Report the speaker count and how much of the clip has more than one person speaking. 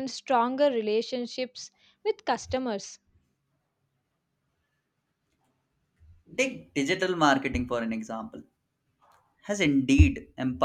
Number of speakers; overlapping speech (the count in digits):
2, no overlap